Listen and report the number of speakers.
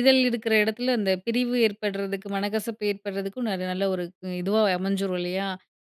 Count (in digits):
1